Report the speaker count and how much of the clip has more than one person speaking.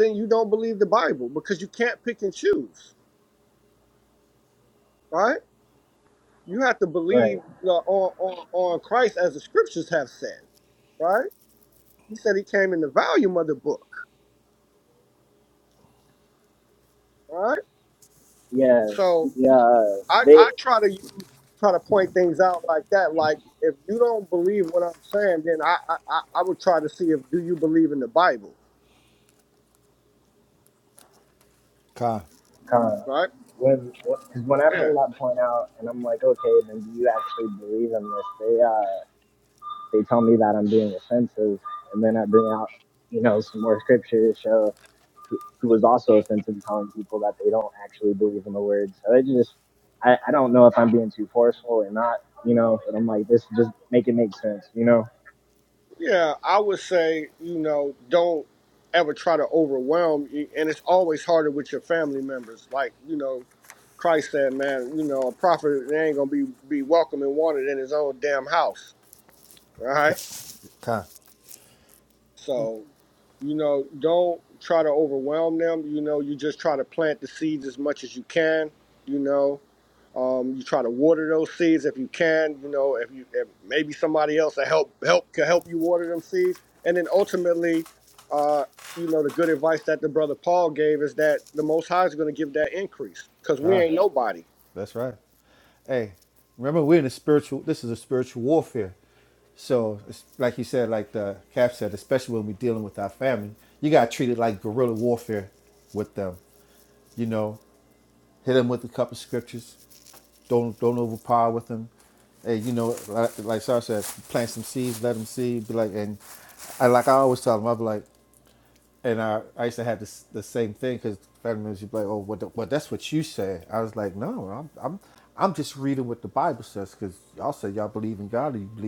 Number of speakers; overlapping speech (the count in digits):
3, about 1%